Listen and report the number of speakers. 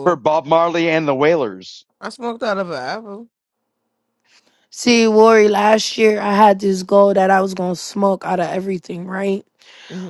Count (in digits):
3